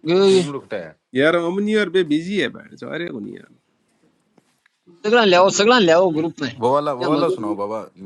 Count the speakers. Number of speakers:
3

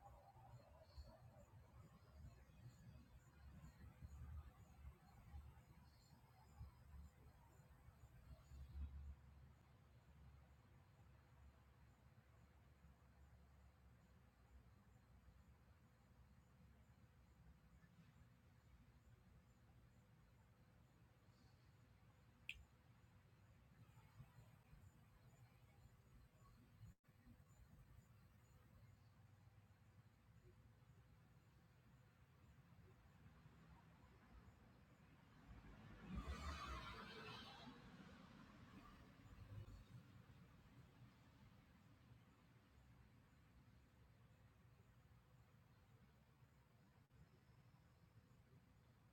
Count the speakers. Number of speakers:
0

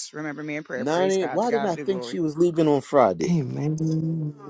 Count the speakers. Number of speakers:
3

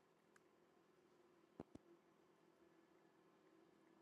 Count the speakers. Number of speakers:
0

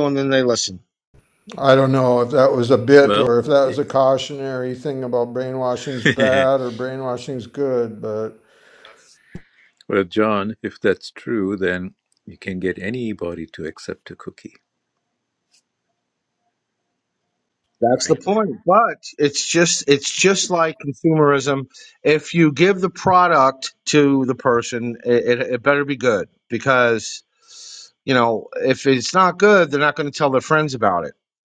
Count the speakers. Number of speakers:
3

